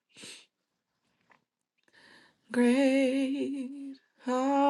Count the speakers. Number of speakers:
1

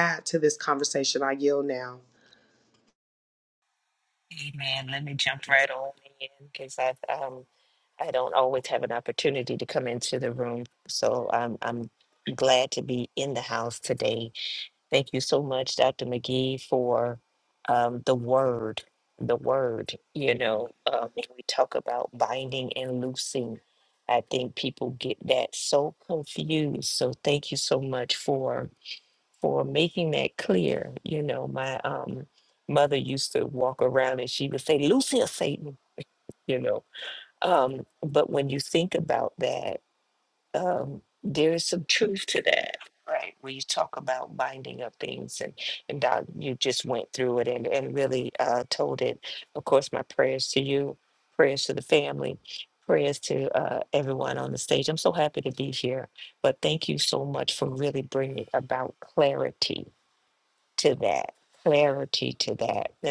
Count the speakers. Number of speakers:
2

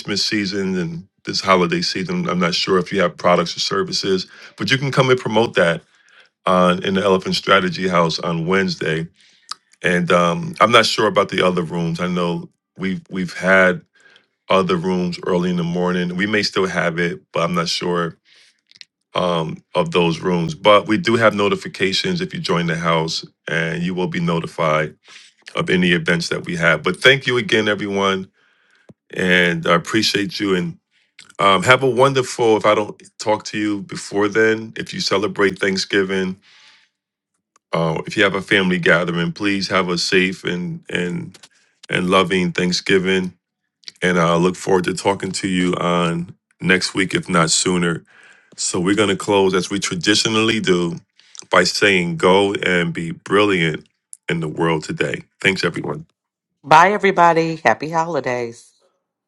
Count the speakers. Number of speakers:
2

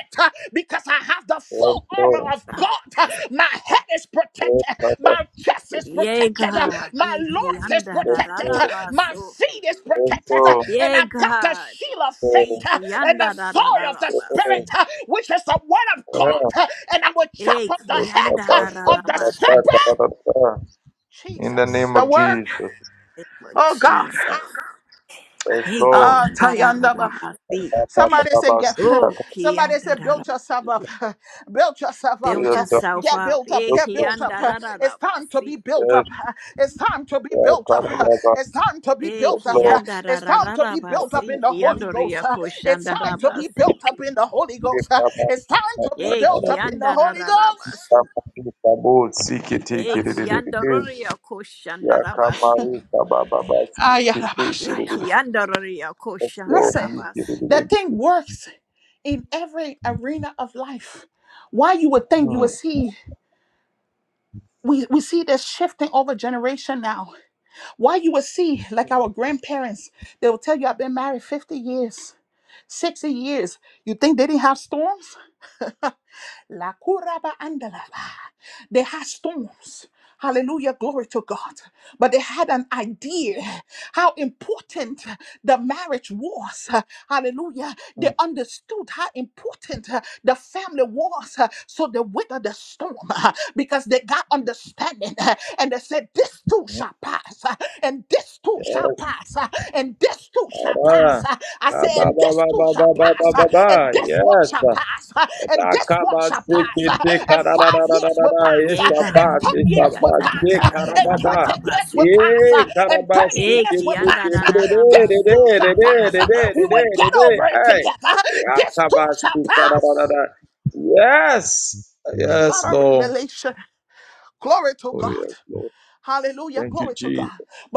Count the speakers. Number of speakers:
3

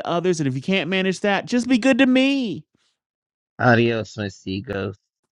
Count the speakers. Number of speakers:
2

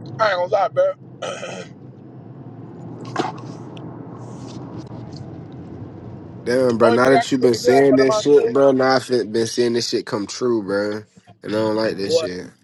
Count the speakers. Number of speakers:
2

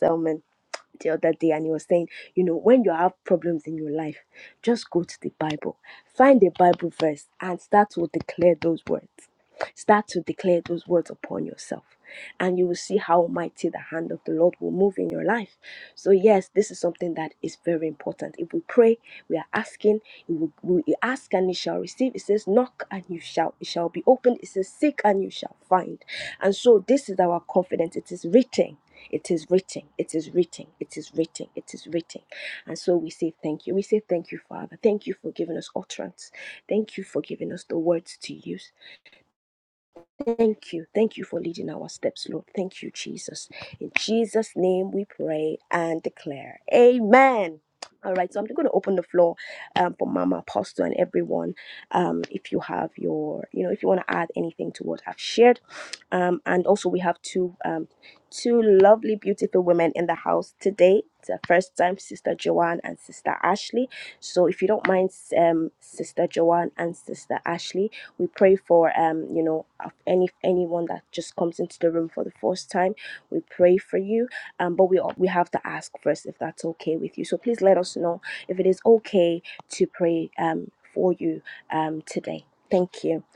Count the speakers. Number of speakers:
1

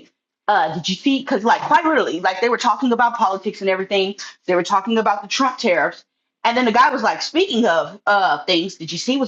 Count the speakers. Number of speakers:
1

